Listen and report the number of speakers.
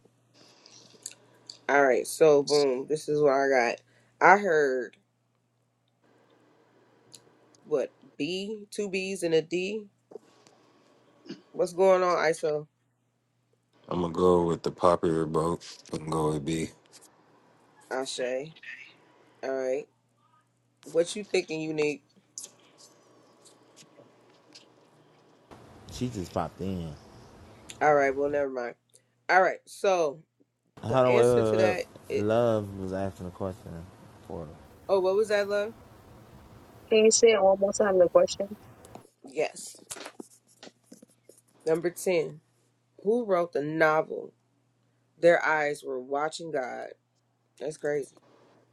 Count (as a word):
four